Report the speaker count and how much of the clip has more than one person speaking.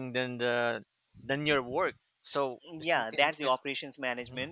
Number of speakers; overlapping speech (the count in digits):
2, about 18%